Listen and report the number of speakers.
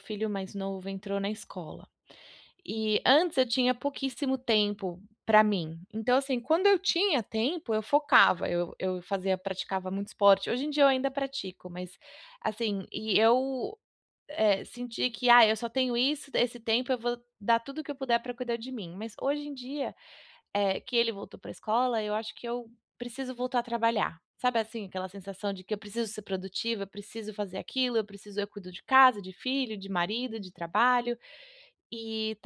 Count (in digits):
1